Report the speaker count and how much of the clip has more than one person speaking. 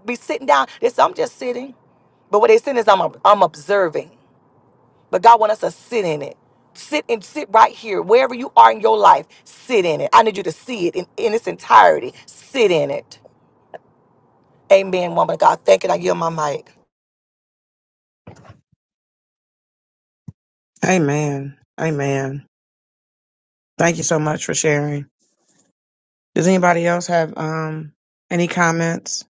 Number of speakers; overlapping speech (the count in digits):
2, no overlap